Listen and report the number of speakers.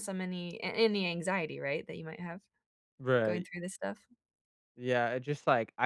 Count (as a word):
two